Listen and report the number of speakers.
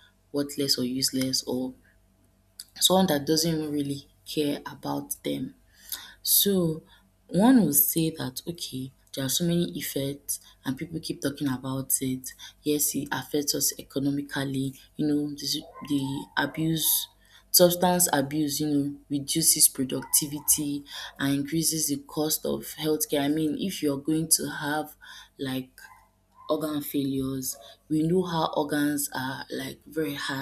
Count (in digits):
1